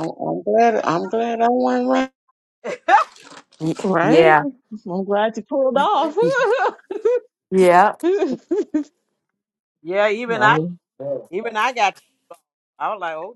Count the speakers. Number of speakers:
four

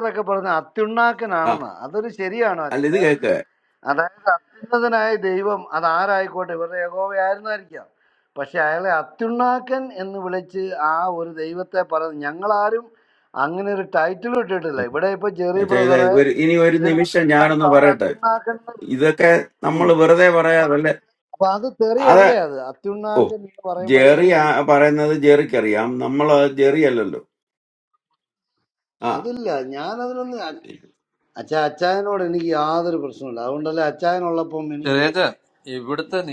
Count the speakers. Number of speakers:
three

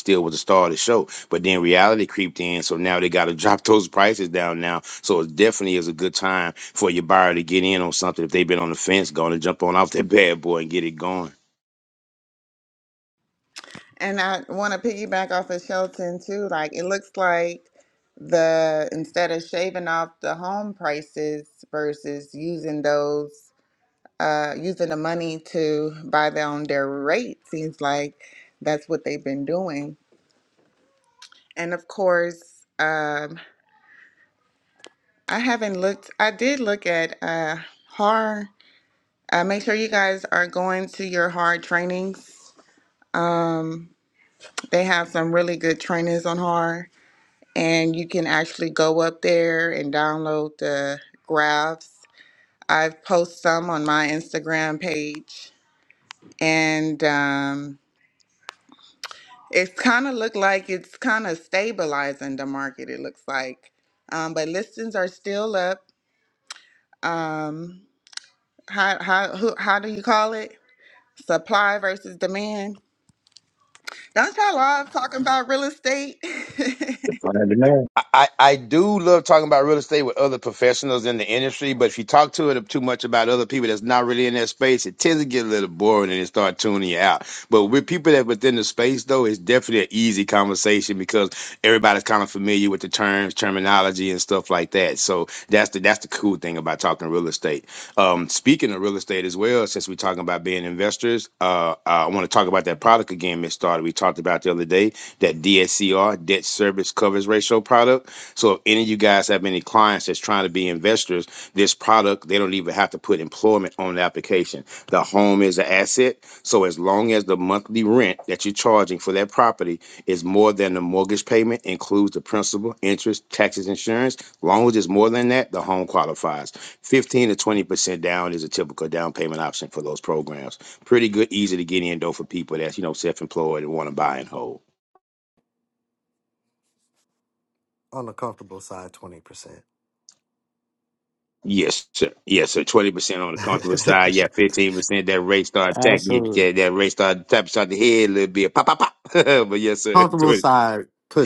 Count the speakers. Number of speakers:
three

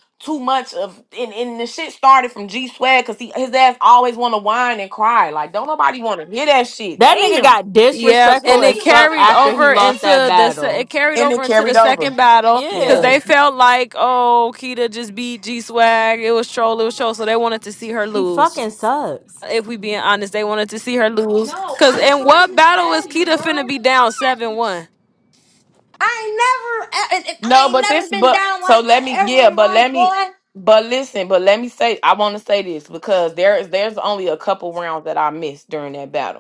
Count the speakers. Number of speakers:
four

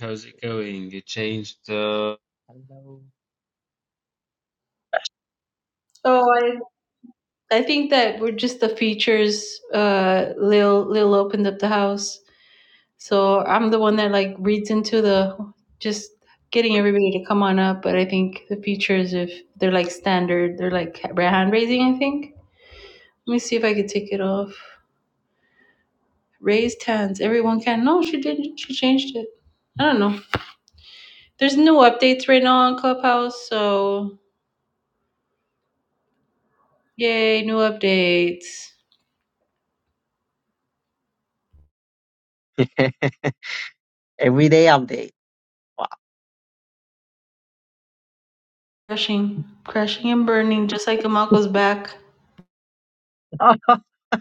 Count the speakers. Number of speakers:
three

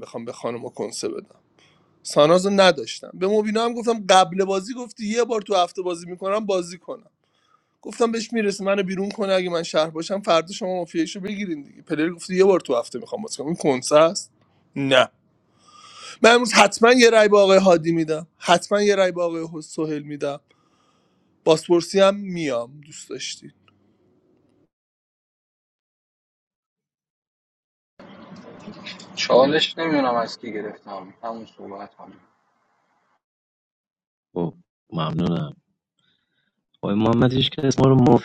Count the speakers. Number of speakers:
three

